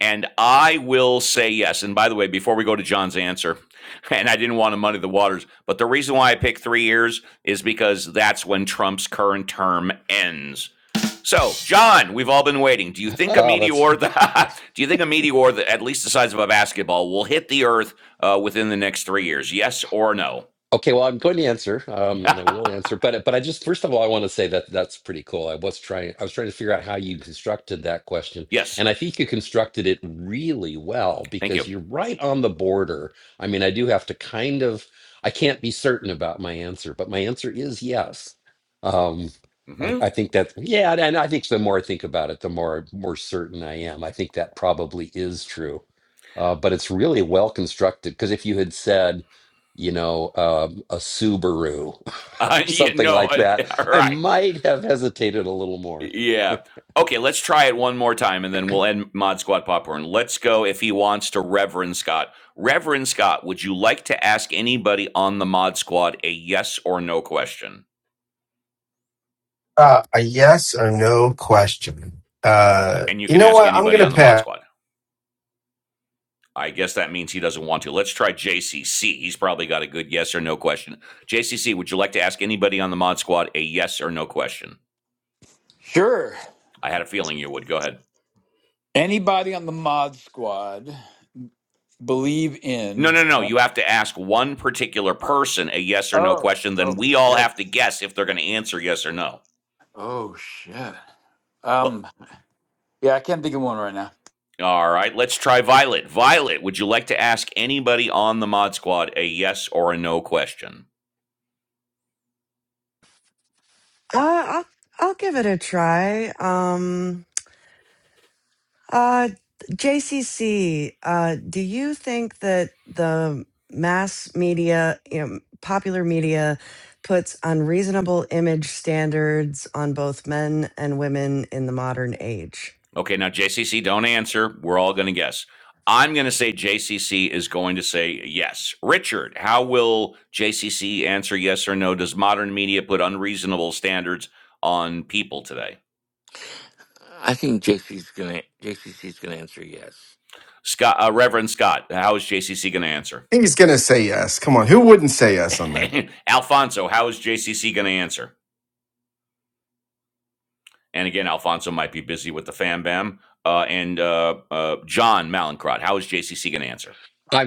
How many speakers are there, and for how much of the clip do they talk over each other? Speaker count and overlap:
6, about 3%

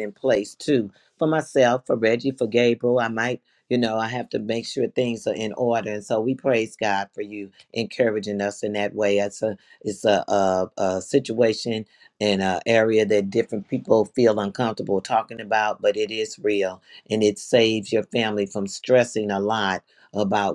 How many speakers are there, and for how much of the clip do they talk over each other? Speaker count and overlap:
1, no overlap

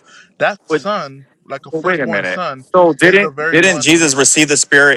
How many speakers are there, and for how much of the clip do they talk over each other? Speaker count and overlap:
2, about 36%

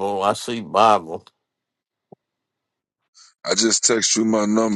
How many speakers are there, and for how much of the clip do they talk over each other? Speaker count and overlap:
2, no overlap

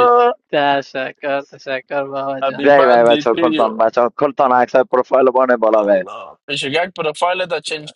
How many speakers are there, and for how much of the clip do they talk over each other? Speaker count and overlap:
3, about 24%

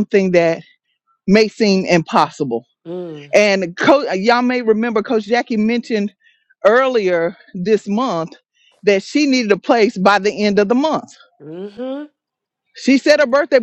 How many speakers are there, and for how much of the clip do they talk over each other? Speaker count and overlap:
2, no overlap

